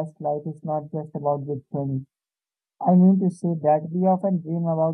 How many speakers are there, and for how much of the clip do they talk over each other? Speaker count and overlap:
one, no overlap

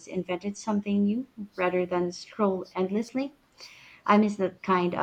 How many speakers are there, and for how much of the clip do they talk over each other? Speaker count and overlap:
one, no overlap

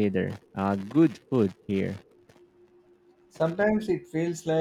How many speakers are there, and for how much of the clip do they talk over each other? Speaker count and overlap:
two, no overlap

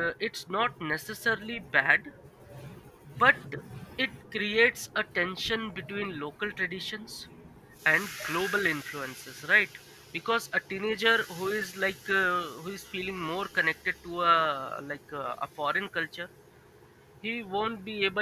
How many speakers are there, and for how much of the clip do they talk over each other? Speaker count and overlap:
one, no overlap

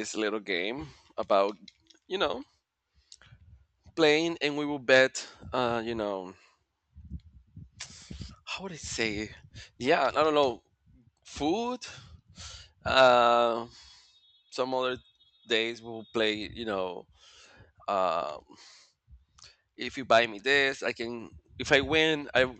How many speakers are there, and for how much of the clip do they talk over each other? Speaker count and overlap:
one, no overlap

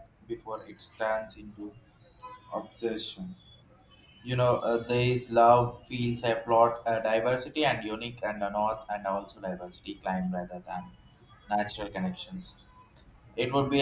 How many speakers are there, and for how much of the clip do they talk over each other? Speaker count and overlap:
one, no overlap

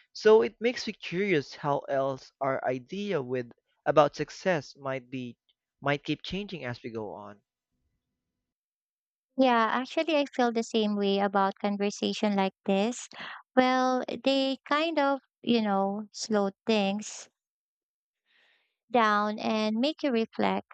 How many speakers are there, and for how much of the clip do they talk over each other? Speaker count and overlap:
two, no overlap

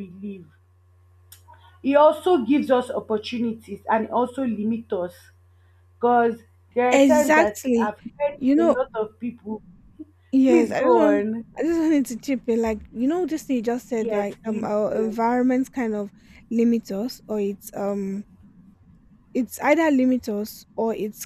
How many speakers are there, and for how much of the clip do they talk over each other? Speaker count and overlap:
two, about 16%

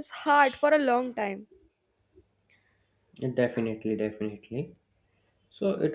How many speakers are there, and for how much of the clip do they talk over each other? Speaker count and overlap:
two, no overlap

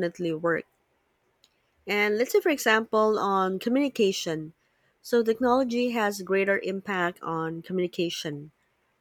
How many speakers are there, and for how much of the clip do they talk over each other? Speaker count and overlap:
one, no overlap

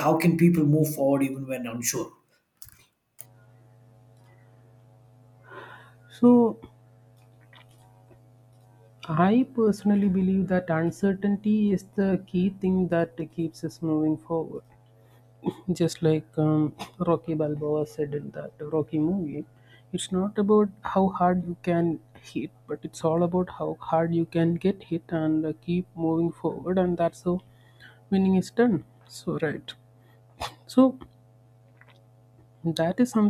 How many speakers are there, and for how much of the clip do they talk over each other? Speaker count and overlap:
two, no overlap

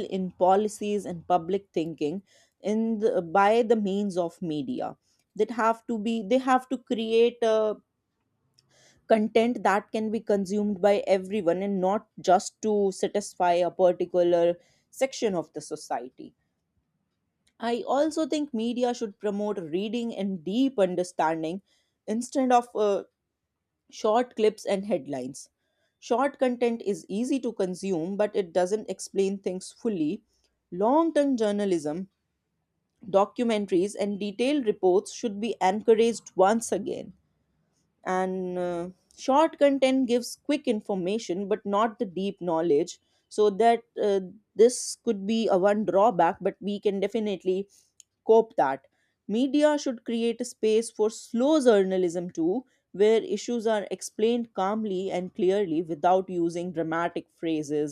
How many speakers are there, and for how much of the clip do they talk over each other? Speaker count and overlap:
one, no overlap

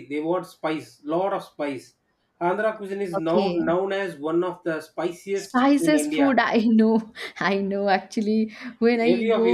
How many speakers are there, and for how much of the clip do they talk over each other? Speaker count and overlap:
two, about 22%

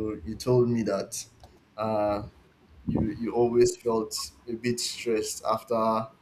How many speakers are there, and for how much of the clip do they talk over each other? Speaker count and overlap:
one, no overlap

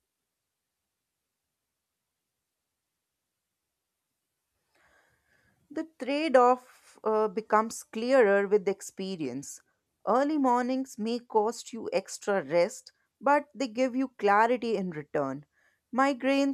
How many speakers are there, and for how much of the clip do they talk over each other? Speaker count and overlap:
one, no overlap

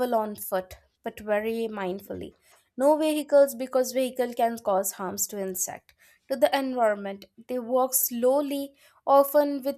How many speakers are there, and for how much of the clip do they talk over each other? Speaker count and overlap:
one, no overlap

